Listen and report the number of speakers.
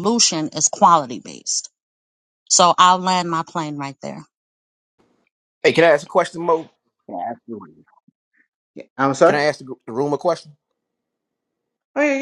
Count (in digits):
3